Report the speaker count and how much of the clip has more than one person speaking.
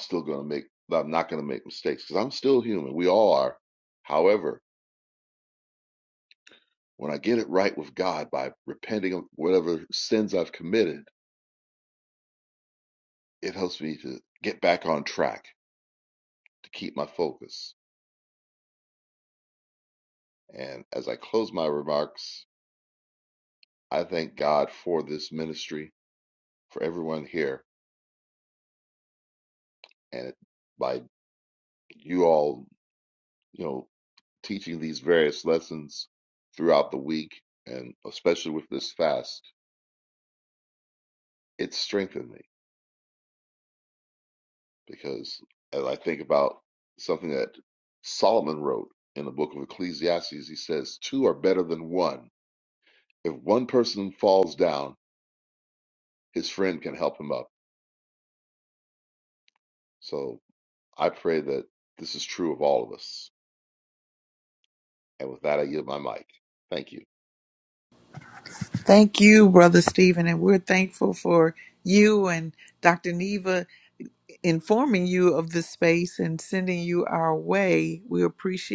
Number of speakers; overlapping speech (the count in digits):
2, no overlap